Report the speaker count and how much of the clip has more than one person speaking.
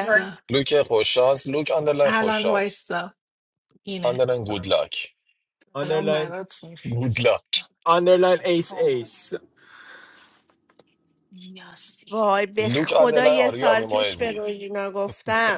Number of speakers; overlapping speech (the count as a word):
four, about 24%